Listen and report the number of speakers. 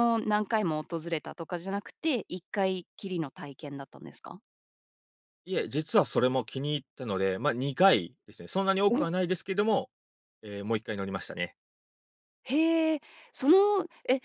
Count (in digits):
2